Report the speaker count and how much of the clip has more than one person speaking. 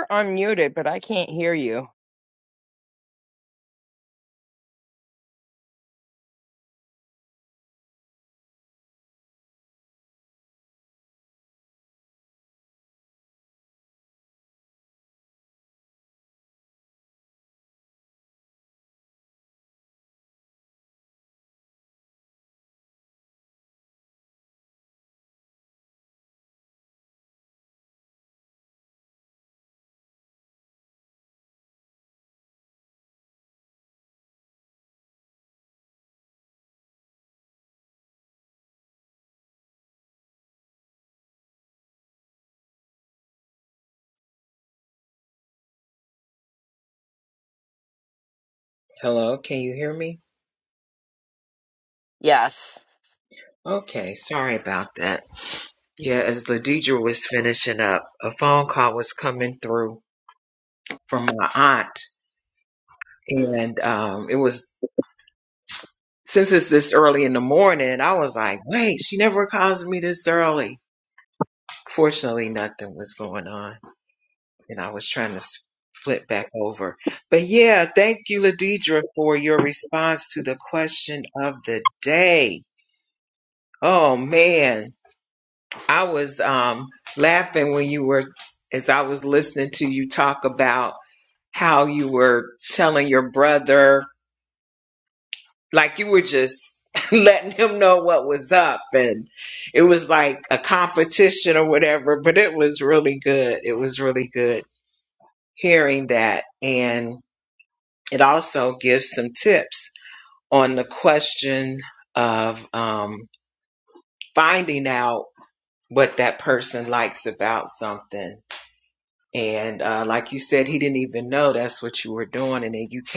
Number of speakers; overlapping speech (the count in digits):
2, no overlap